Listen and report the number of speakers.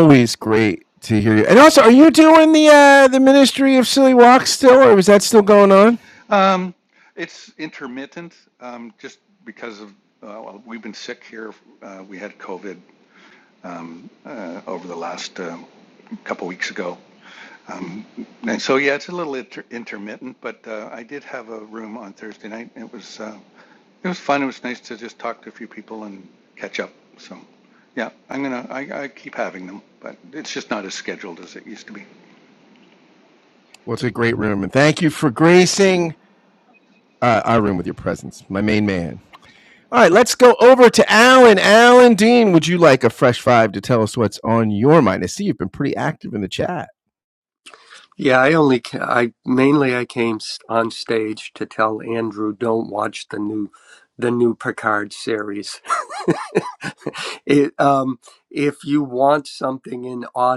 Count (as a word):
three